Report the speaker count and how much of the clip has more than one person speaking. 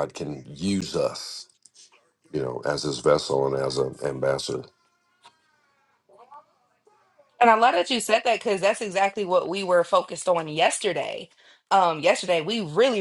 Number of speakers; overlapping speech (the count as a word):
two, no overlap